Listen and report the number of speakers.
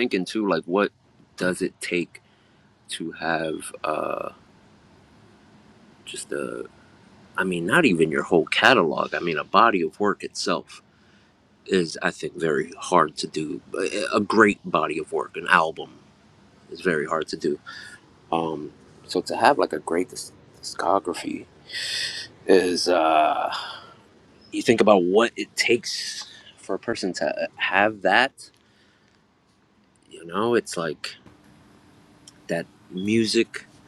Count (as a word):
one